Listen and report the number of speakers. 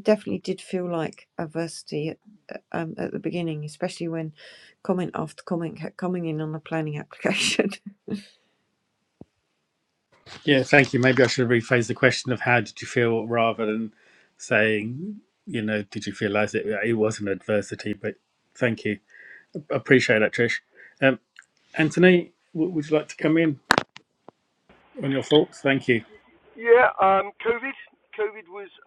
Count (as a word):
three